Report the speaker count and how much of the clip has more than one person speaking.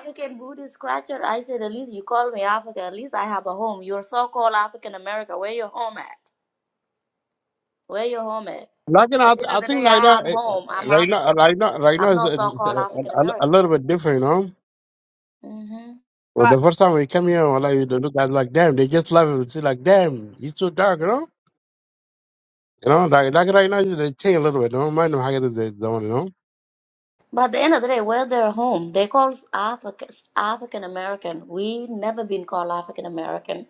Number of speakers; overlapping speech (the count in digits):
2, about 11%